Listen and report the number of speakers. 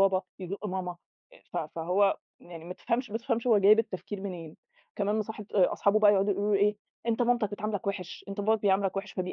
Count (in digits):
1